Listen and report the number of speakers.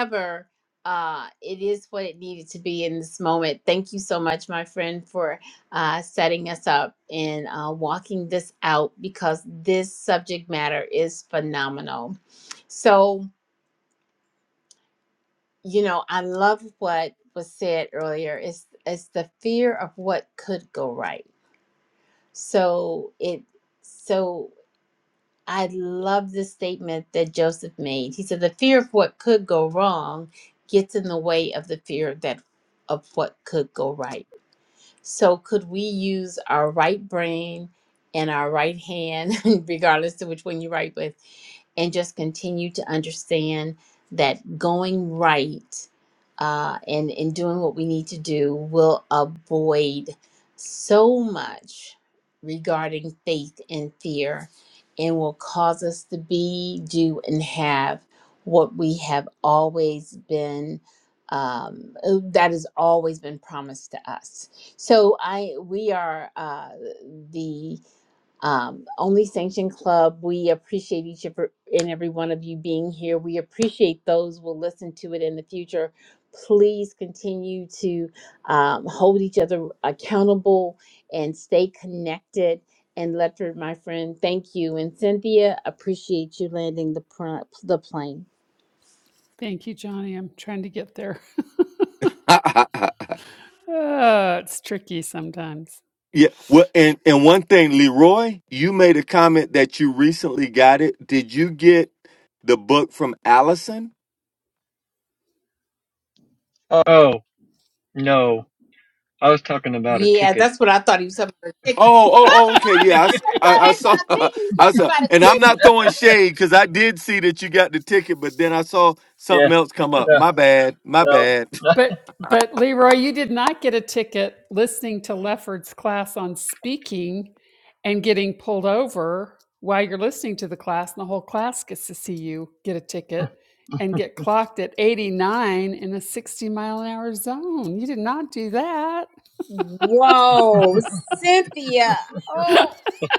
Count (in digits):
4